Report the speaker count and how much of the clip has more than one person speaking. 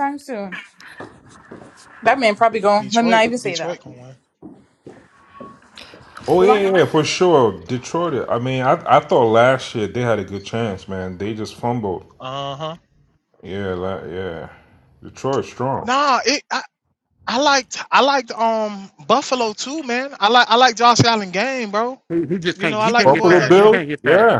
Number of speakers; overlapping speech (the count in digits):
4, about 14%